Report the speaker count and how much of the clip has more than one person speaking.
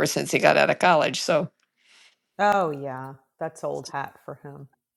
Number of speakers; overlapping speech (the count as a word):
two, no overlap